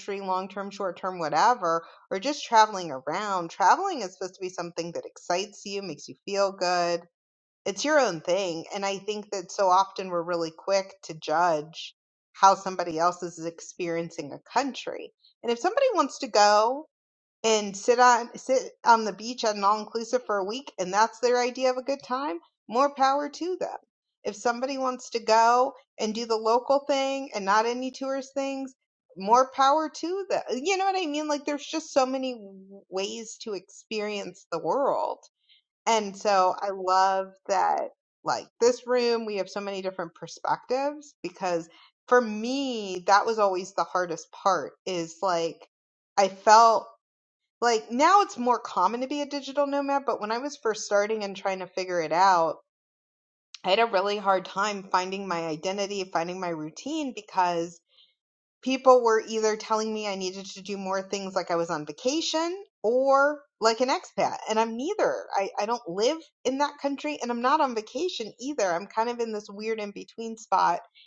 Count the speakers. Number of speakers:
1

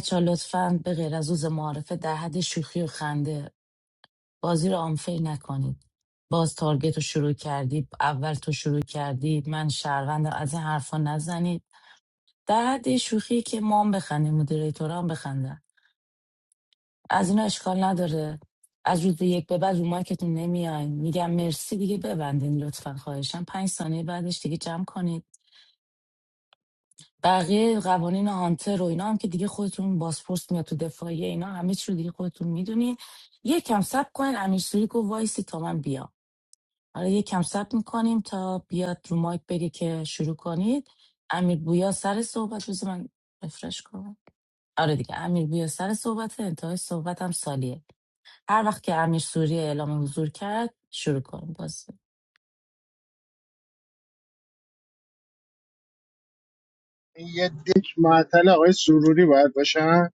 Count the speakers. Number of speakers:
2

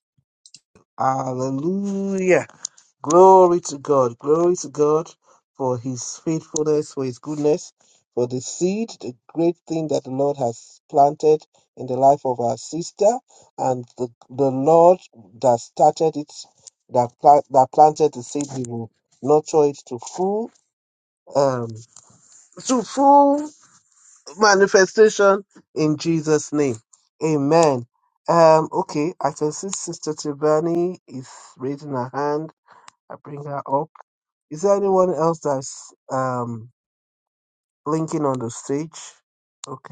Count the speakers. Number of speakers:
1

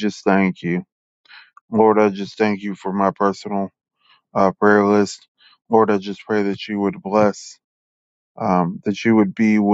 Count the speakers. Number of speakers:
1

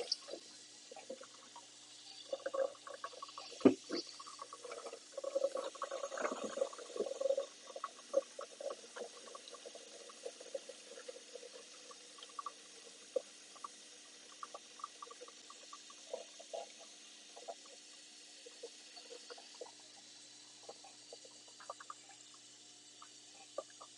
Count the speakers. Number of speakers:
0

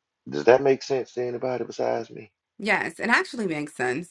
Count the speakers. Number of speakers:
2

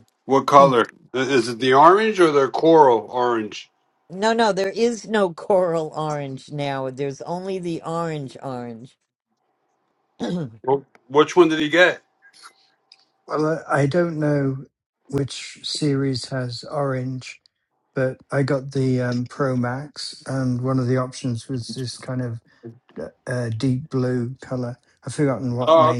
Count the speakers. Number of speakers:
3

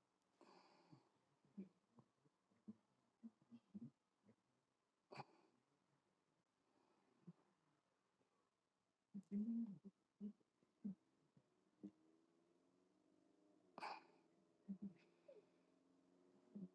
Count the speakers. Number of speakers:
0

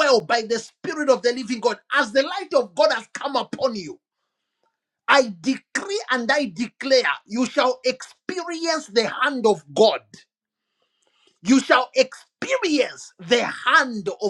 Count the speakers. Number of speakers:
1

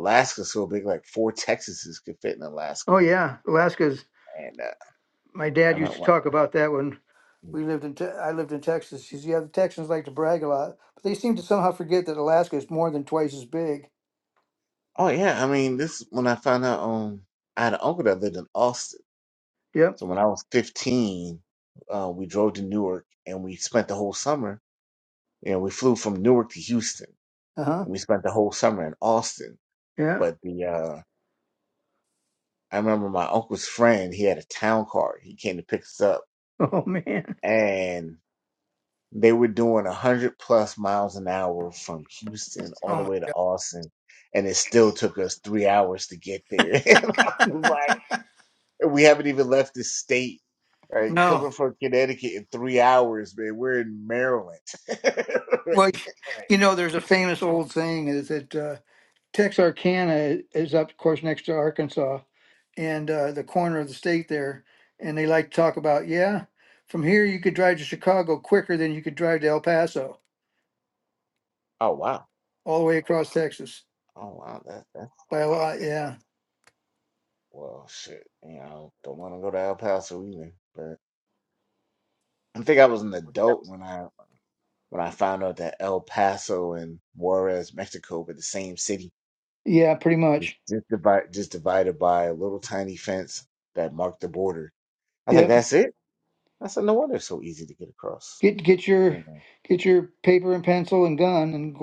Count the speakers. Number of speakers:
2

